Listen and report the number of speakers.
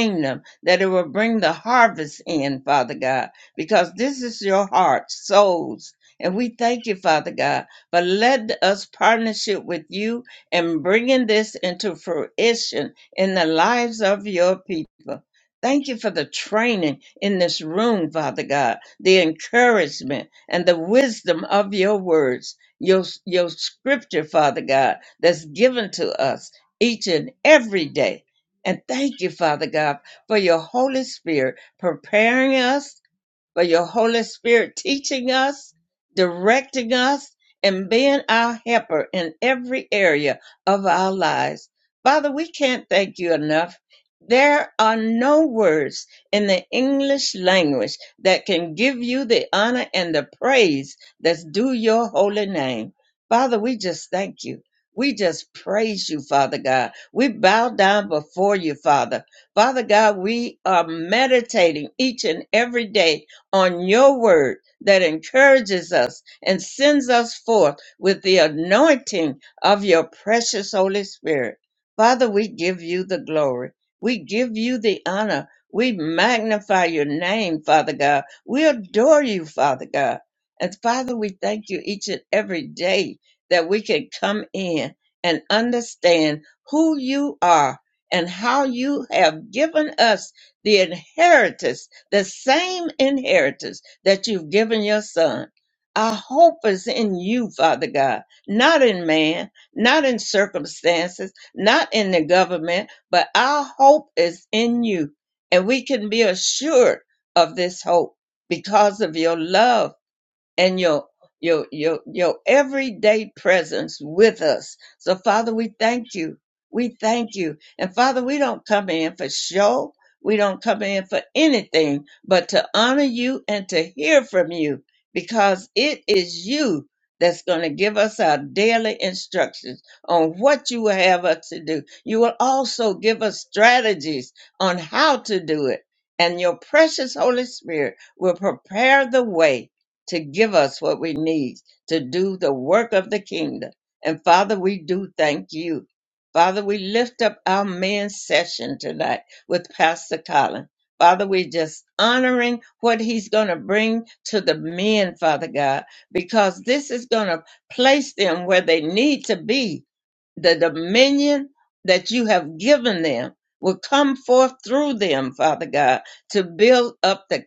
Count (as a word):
one